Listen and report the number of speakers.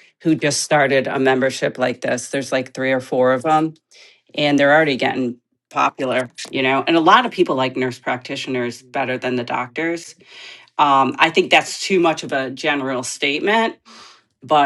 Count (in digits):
1